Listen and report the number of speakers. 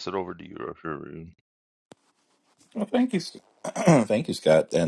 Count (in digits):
2